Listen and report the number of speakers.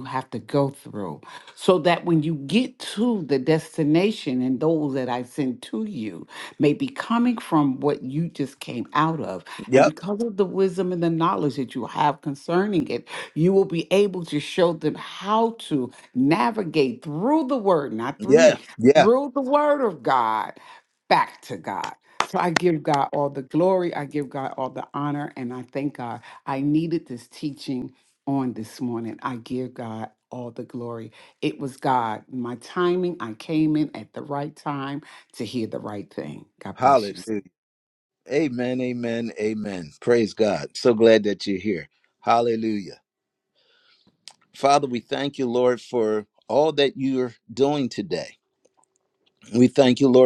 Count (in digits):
2